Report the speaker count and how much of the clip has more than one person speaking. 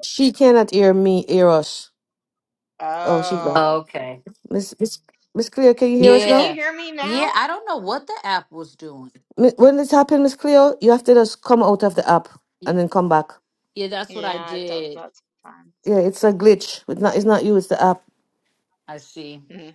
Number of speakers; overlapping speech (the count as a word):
three, about 13%